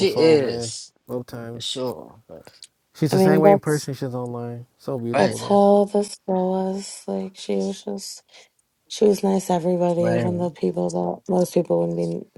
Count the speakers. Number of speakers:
3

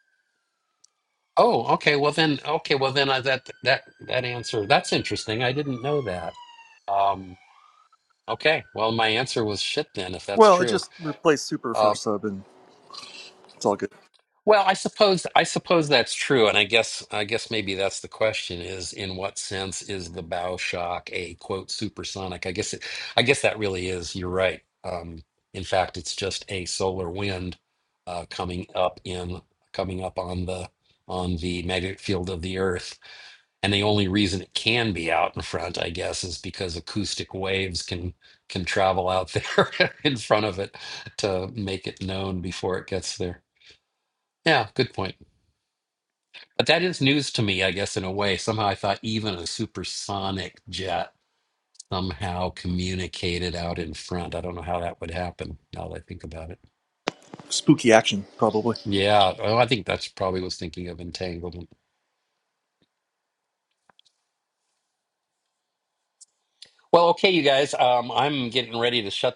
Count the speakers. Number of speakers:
2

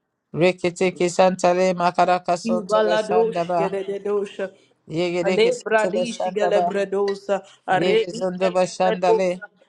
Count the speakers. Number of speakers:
2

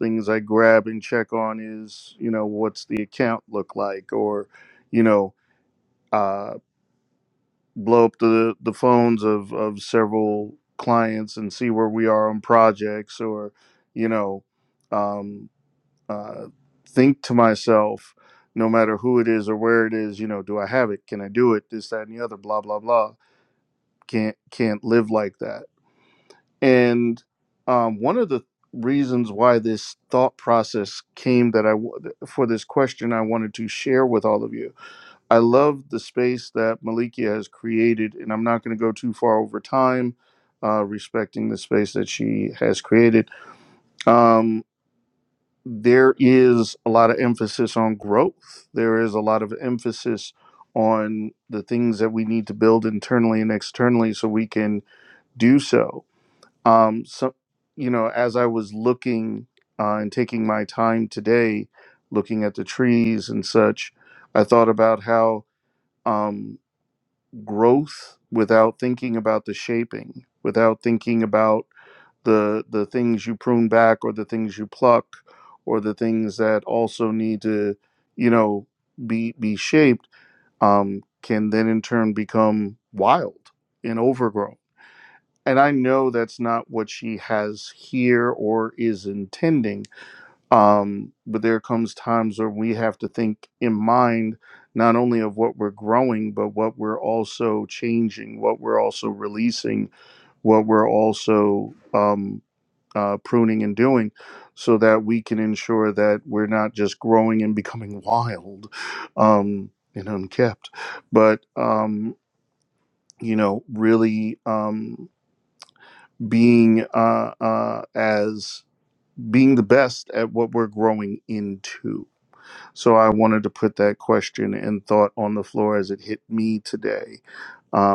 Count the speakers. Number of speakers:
1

